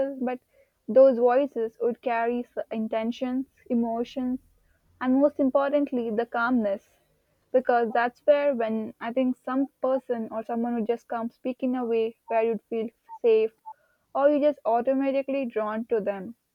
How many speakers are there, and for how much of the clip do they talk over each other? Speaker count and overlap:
one, no overlap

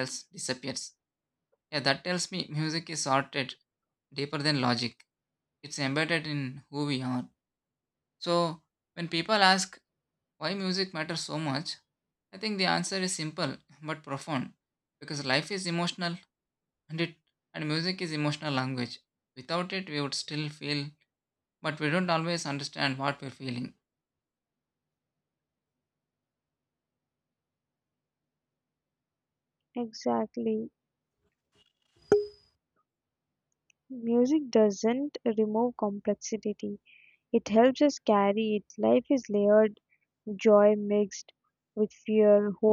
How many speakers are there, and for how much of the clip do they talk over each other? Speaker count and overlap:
two, no overlap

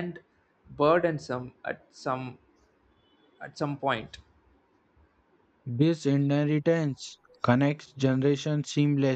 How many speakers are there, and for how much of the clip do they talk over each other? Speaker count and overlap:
two, no overlap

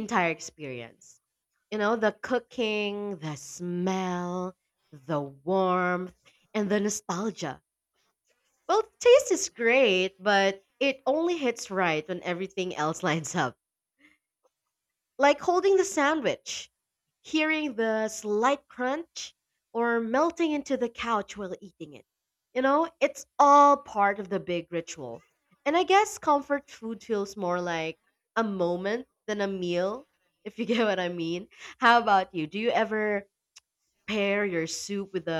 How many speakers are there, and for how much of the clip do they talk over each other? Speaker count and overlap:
one, no overlap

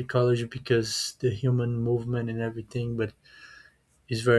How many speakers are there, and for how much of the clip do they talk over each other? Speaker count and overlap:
one, no overlap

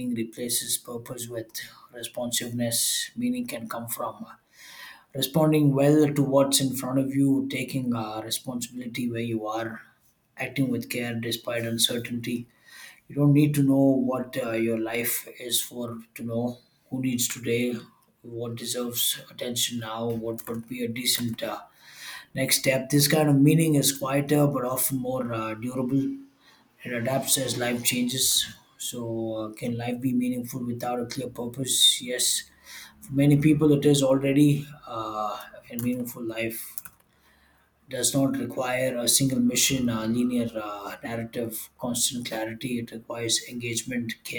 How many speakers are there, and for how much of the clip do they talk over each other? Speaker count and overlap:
one, no overlap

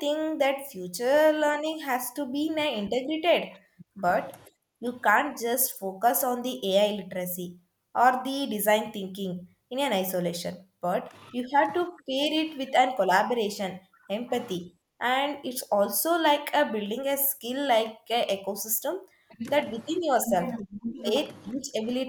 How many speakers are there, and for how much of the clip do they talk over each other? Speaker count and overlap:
one, no overlap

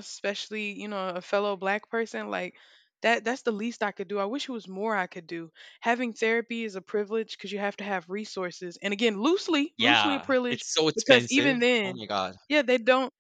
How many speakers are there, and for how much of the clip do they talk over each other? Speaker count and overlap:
two, about 14%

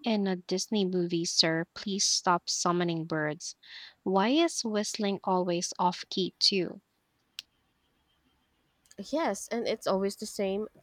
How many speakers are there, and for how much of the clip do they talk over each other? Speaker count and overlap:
two, no overlap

